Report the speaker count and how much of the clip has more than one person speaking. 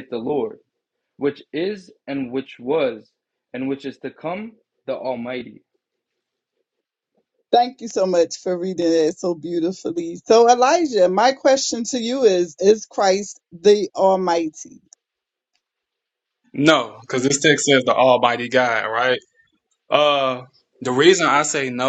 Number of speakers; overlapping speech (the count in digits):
3, no overlap